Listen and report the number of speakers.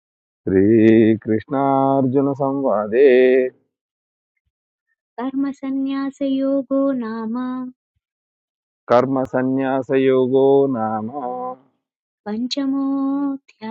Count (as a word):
two